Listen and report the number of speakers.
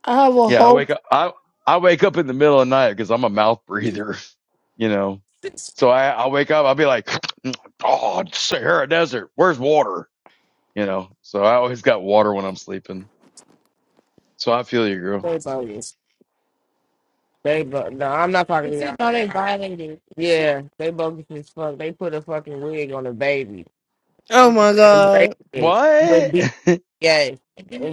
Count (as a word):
three